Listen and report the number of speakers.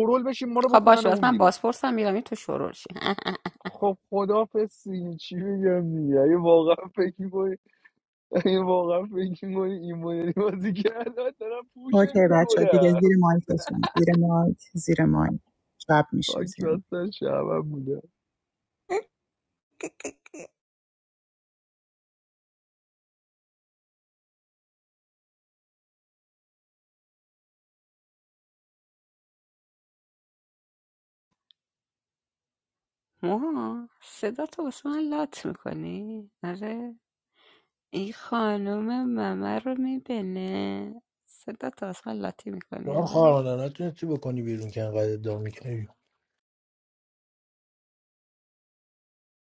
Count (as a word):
four